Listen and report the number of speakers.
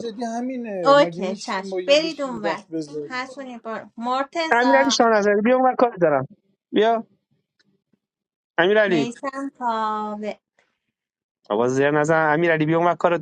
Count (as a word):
three